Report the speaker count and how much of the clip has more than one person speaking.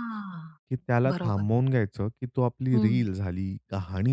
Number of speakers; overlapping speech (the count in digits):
2, about 16%